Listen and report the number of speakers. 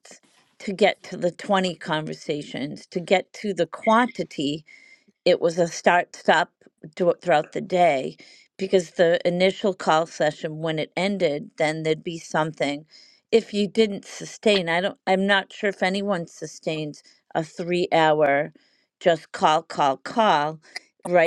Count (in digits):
1